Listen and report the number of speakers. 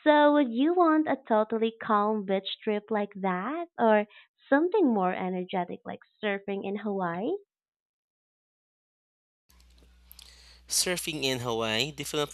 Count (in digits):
2